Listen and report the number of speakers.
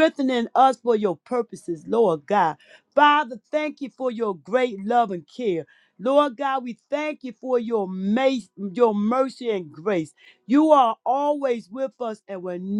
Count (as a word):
one